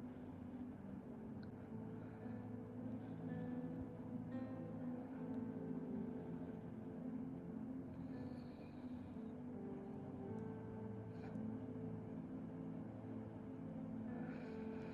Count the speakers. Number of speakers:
zero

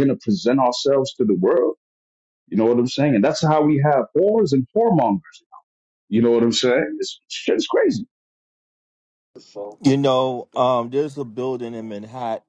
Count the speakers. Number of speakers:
two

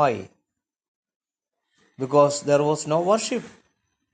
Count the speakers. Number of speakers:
one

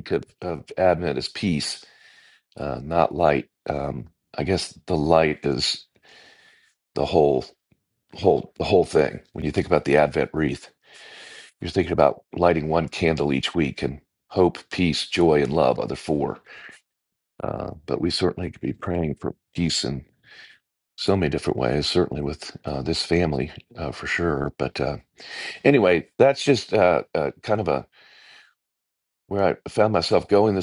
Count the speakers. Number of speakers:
one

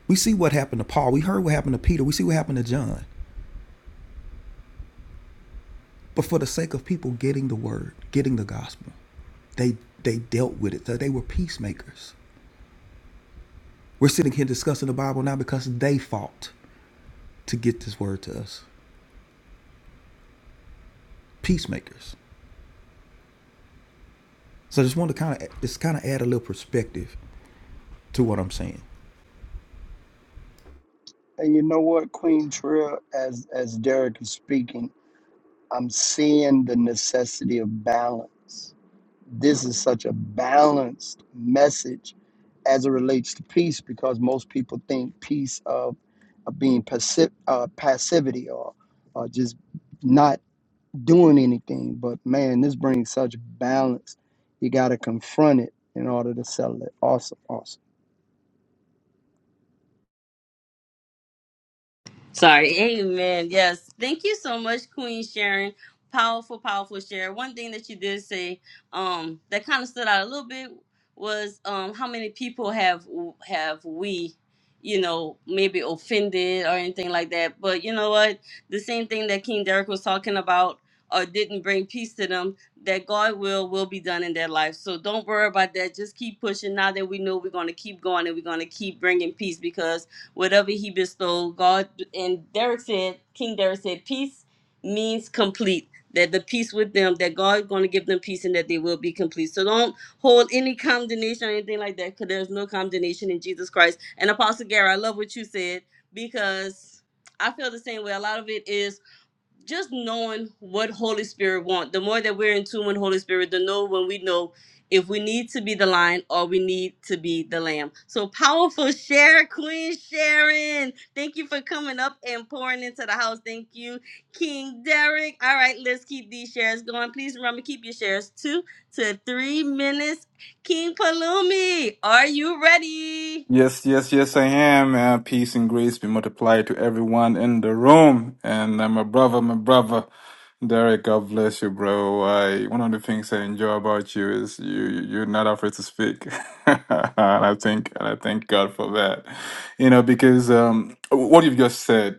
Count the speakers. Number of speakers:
four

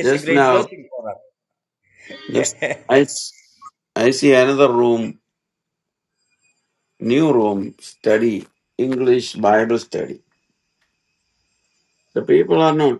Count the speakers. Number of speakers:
two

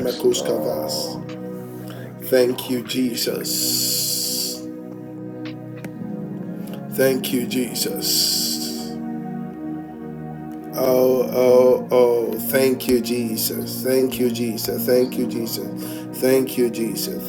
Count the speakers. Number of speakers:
two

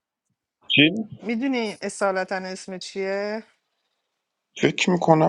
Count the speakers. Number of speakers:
two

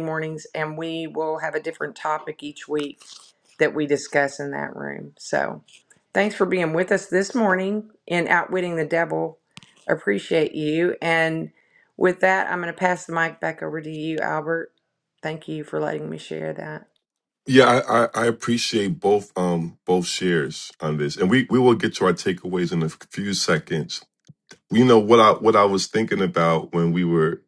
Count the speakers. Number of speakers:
two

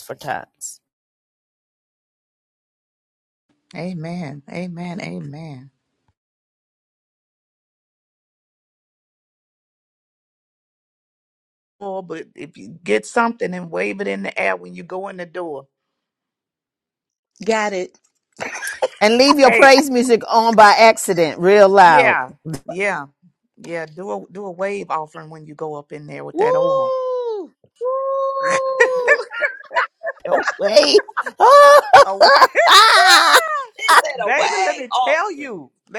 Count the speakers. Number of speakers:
three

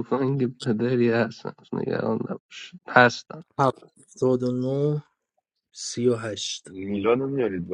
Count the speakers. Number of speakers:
three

